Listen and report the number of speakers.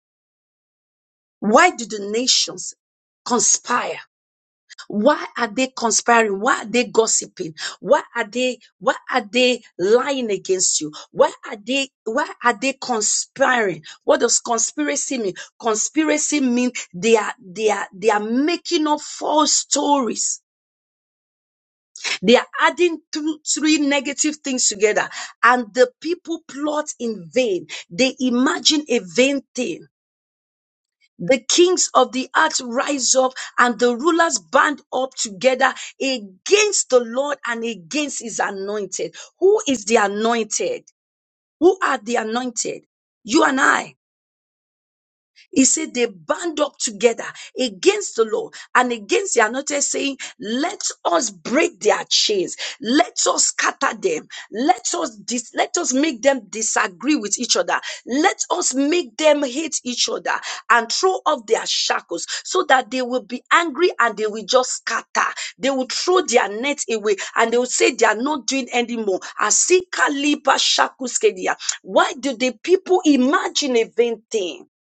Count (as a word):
one